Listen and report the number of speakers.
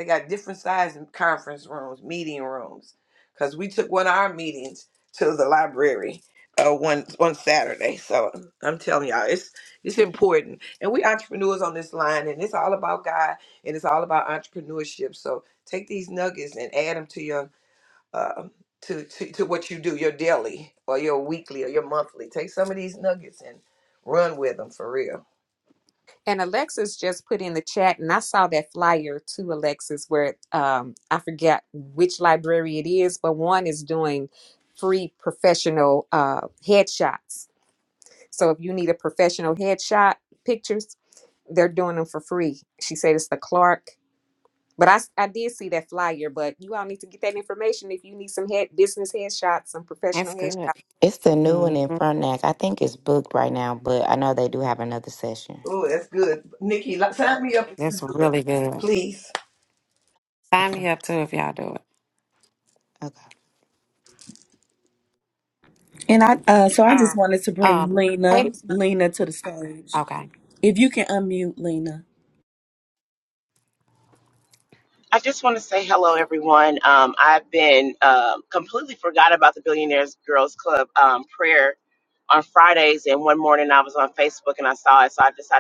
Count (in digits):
6